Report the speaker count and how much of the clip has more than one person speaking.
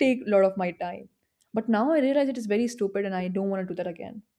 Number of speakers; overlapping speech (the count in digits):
1, no overlap